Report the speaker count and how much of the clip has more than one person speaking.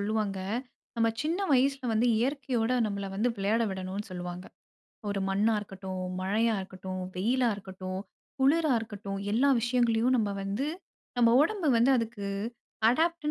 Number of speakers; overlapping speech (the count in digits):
1, no overlap